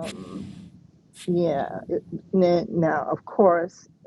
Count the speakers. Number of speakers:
one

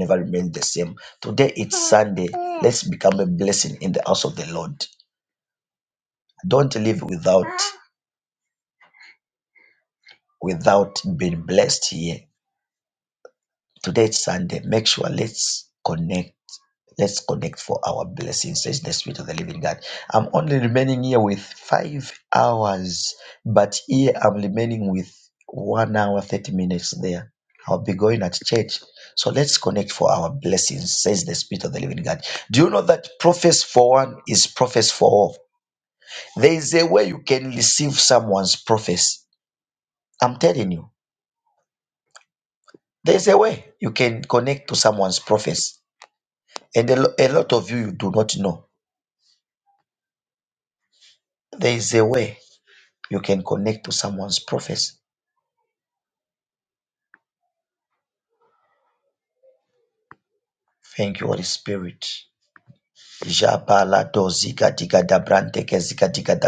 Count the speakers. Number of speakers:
one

